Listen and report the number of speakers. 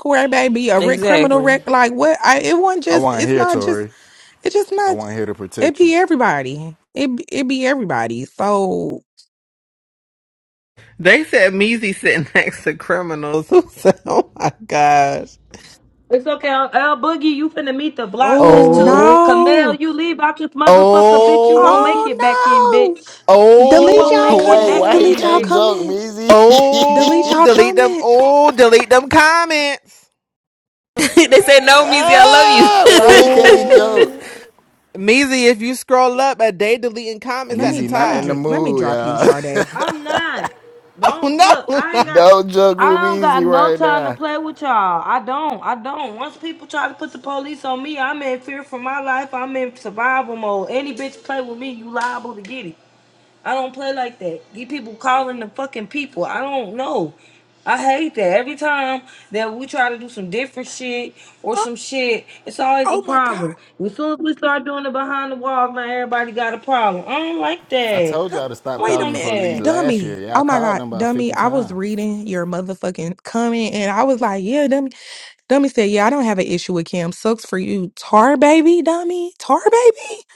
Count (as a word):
five